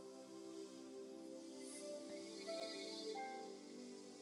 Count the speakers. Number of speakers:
zero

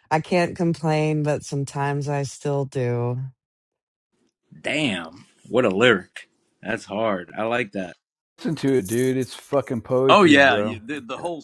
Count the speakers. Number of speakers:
four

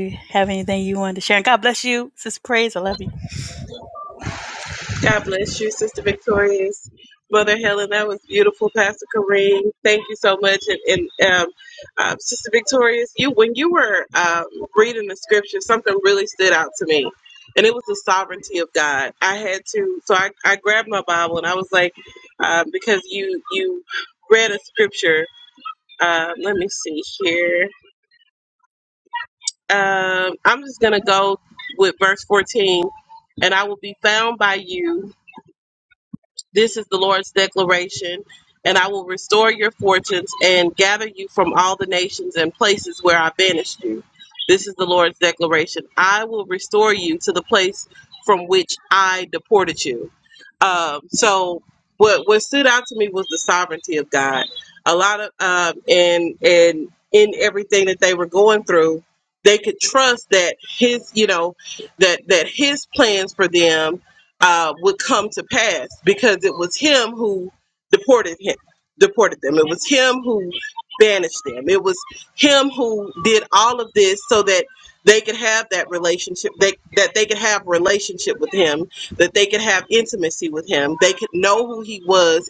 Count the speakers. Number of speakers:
two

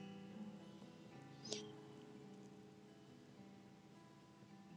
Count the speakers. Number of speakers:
zero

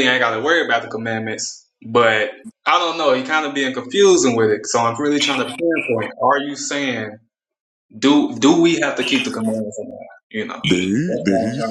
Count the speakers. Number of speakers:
two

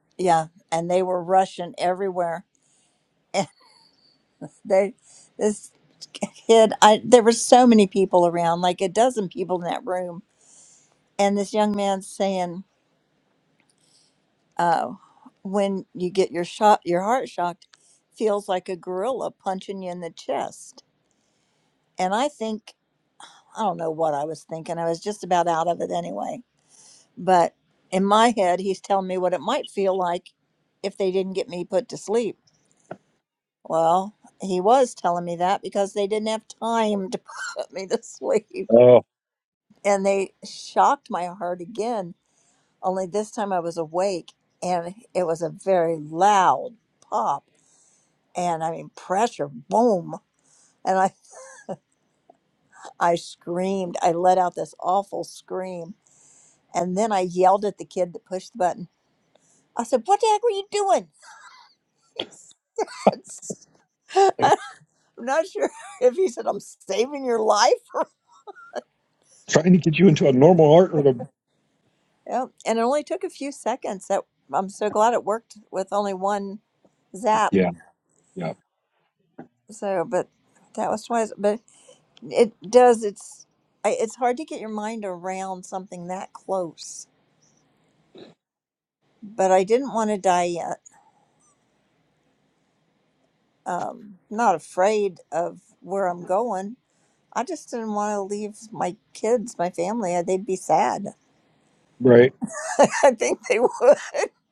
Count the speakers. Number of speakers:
two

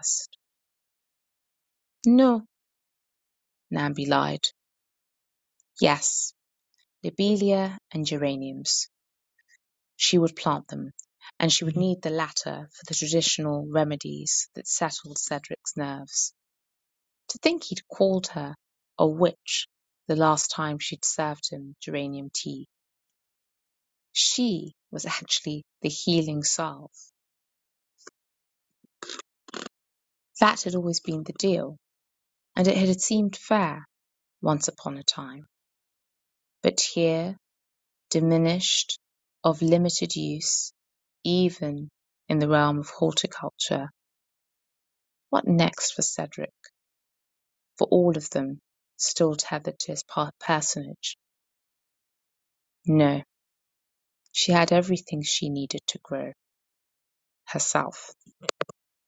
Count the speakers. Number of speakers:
one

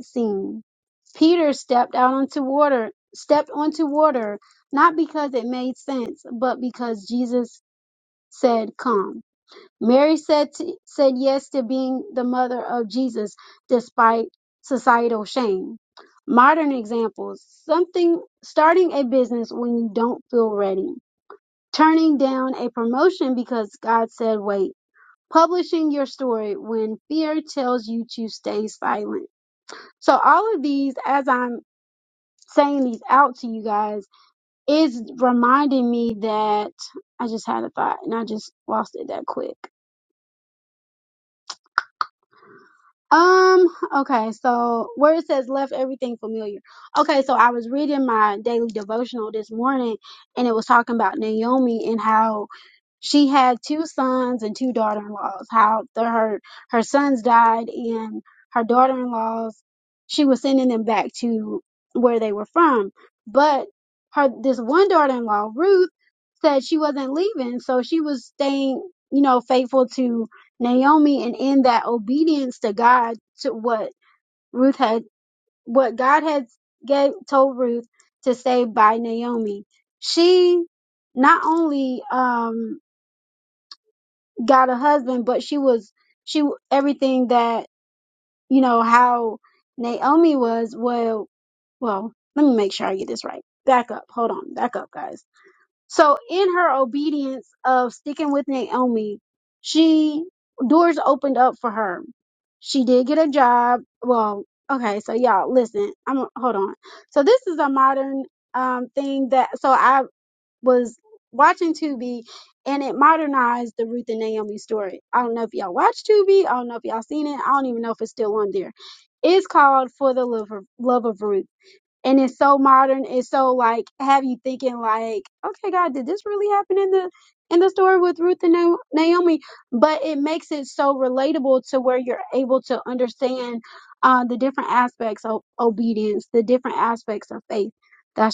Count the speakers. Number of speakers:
one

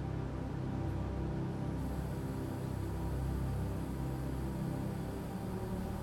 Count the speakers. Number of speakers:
zero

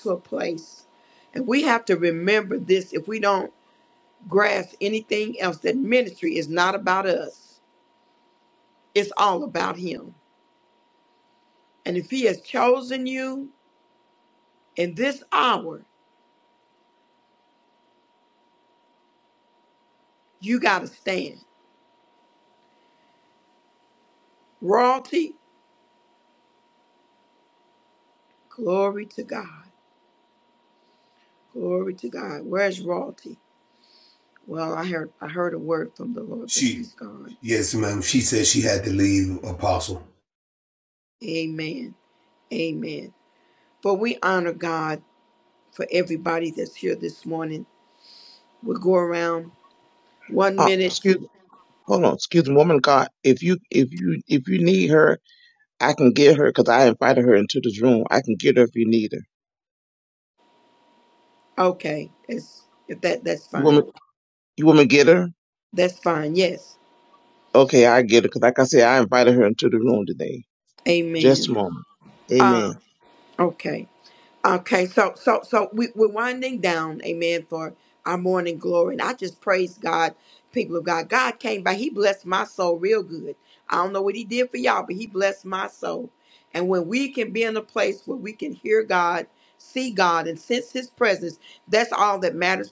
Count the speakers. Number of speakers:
three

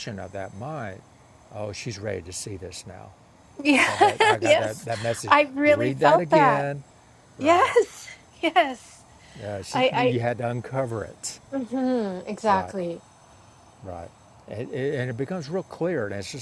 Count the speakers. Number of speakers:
two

